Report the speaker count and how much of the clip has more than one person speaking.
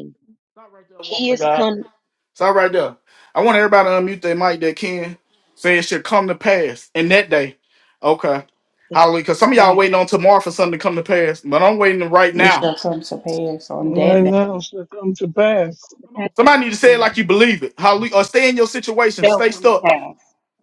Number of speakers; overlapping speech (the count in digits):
4, about 13%